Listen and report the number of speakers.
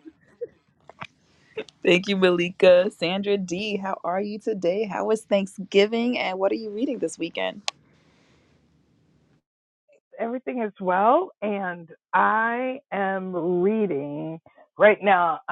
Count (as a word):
two